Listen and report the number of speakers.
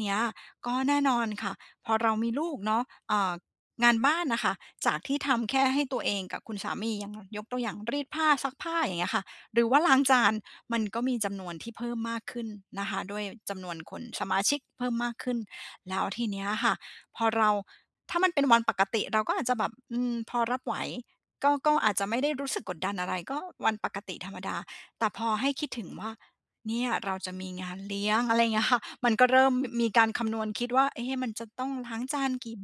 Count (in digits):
1